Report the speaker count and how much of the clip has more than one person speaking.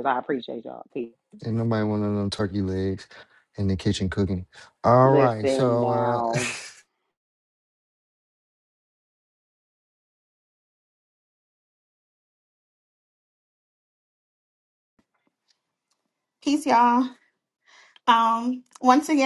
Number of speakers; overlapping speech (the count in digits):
3, about 6%